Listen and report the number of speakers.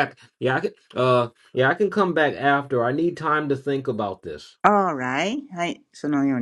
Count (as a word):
two